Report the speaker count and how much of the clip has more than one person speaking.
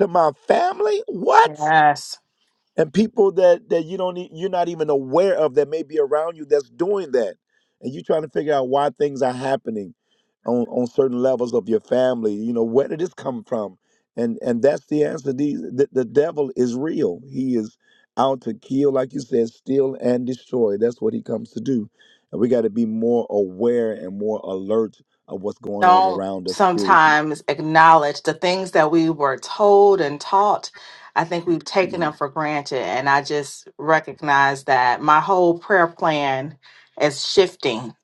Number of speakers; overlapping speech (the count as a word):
two, about 3%